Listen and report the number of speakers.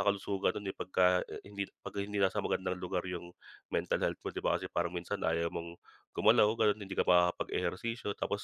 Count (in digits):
1